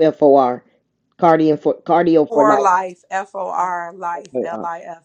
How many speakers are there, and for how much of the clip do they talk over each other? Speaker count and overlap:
2, about 16%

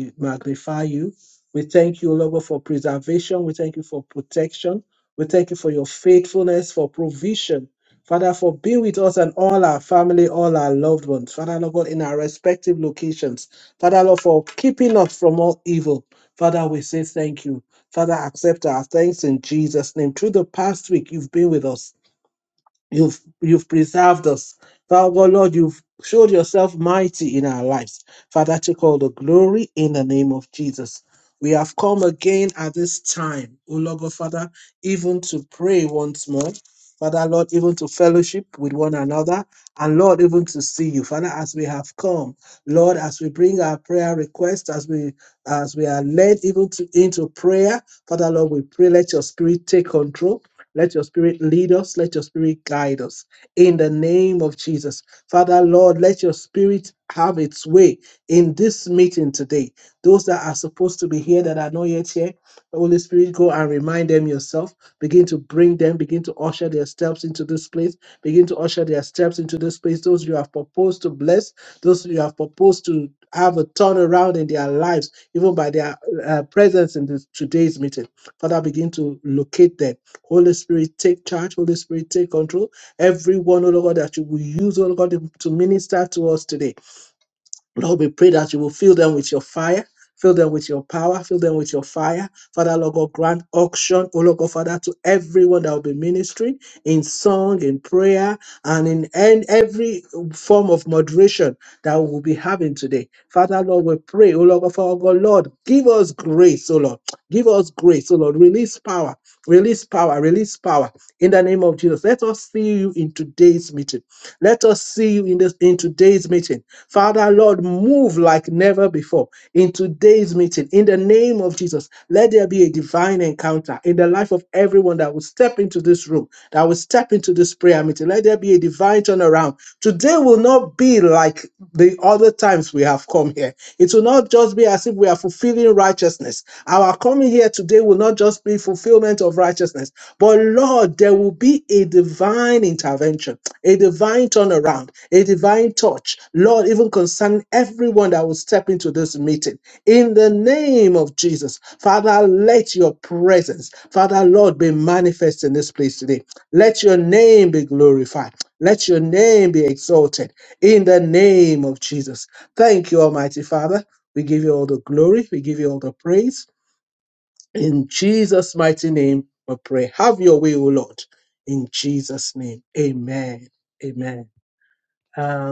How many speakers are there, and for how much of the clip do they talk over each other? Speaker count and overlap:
1, no overlap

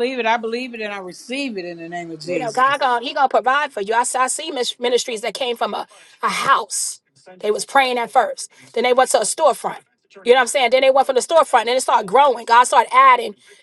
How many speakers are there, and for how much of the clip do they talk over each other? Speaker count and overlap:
2, about 2%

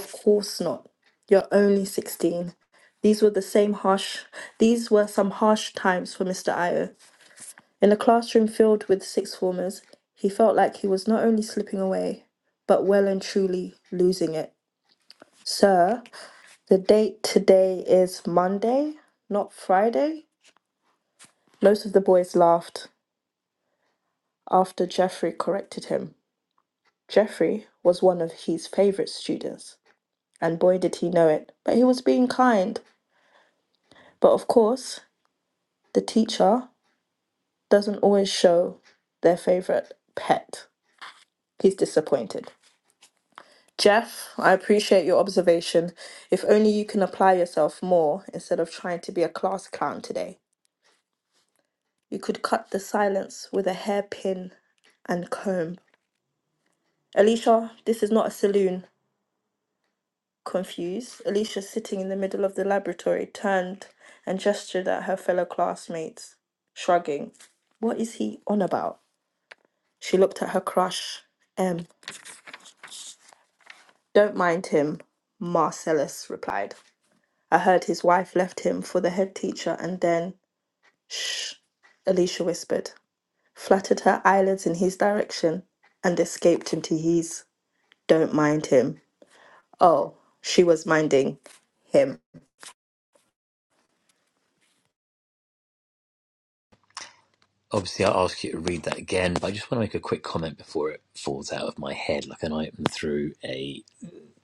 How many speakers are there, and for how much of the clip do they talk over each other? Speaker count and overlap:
2, no overlap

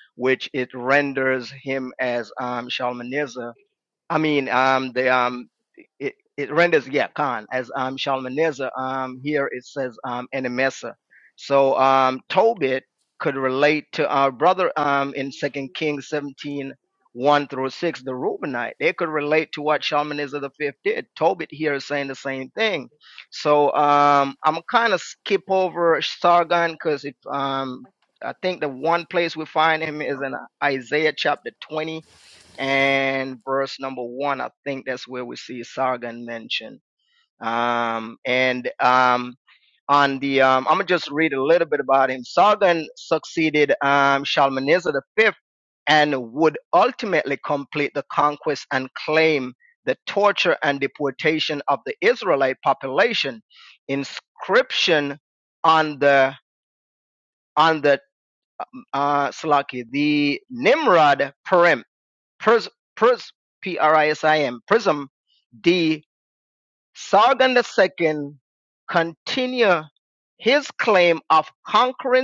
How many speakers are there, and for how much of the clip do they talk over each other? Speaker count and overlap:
1, no overlap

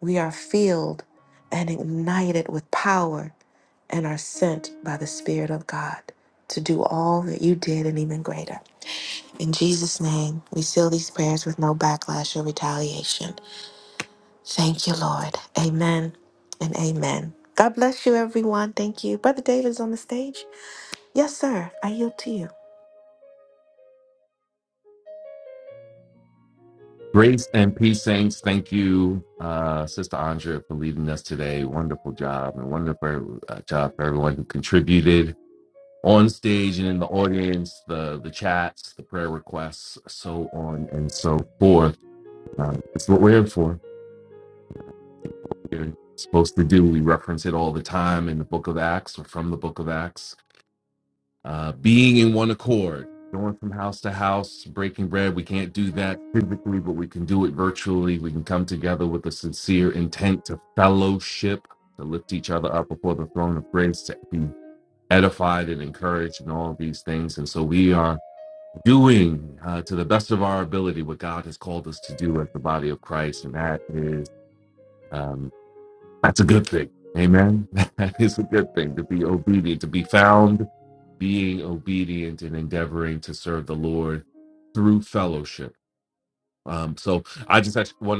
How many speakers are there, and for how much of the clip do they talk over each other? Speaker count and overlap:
2, no overlap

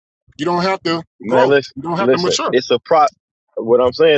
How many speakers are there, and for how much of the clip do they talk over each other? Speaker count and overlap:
2, about 23%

